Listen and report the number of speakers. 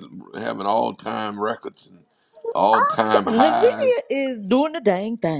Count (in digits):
2